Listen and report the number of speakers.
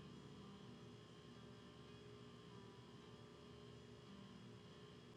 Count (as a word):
zero